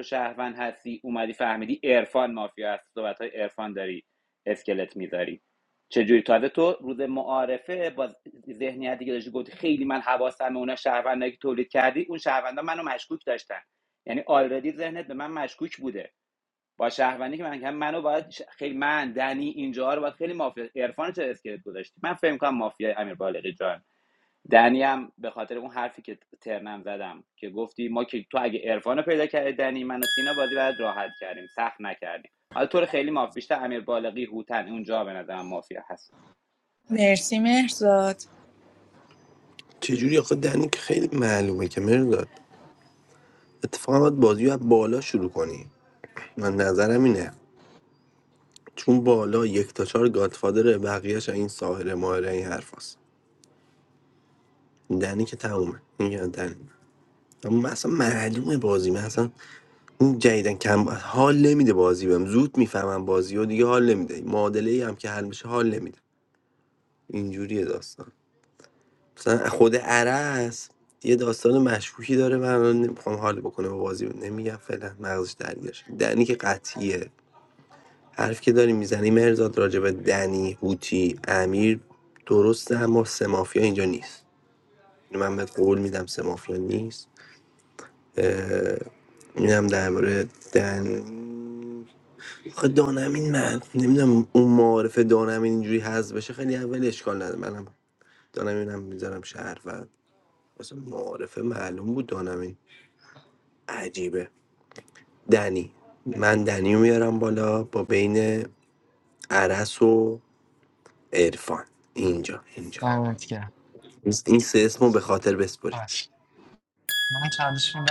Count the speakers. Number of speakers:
four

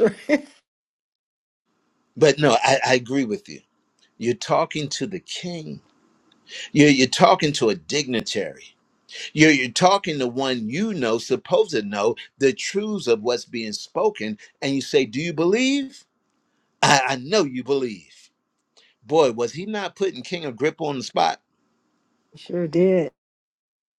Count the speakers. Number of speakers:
two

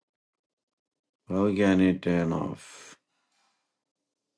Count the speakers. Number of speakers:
one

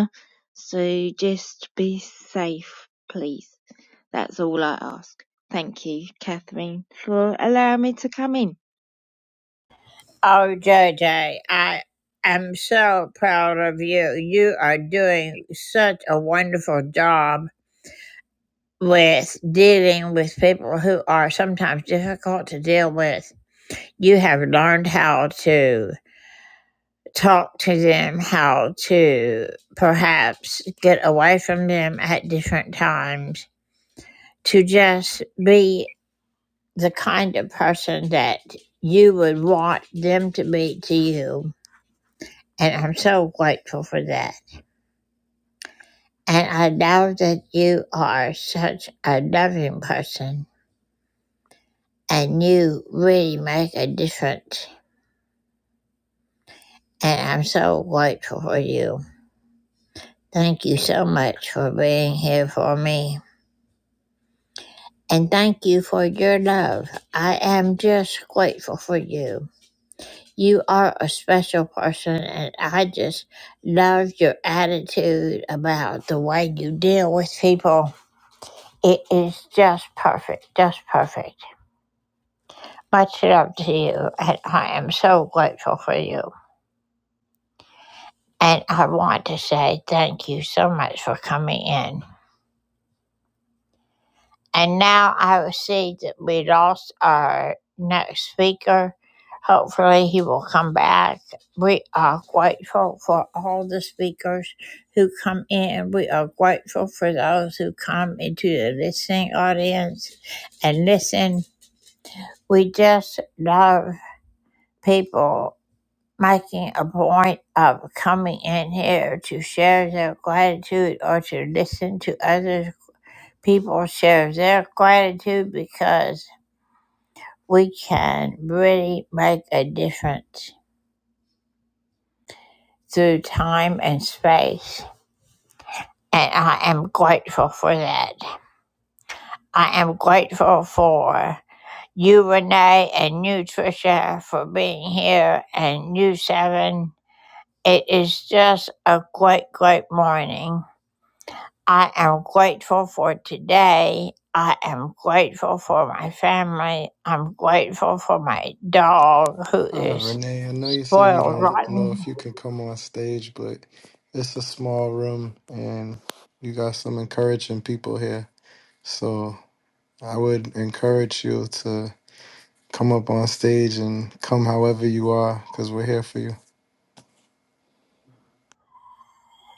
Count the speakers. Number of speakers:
three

